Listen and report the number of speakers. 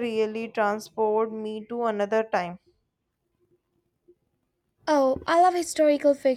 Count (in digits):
2